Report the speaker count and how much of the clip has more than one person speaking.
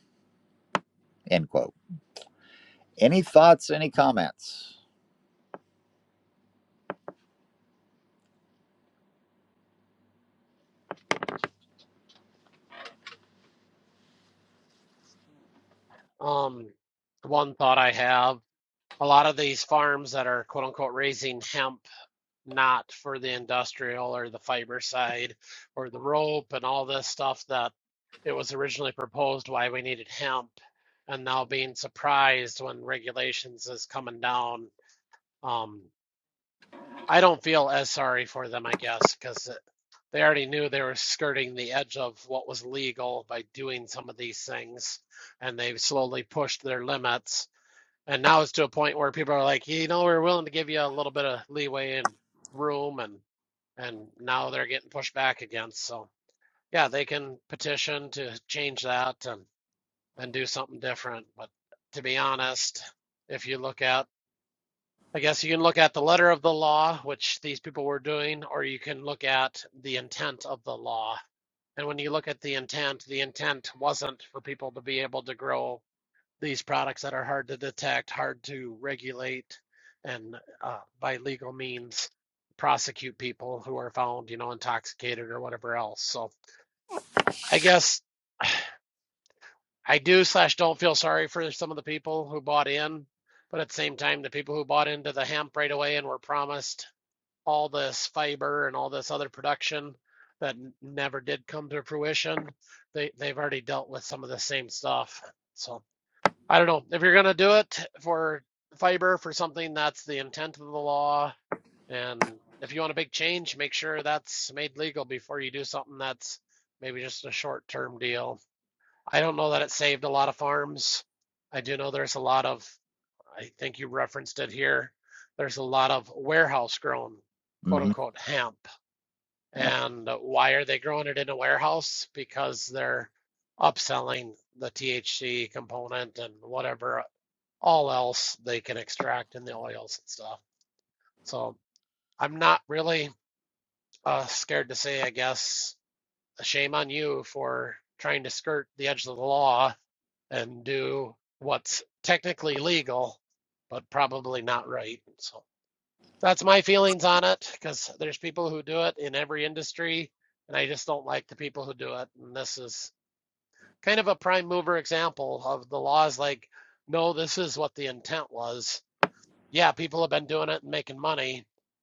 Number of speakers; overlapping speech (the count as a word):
two, under 1%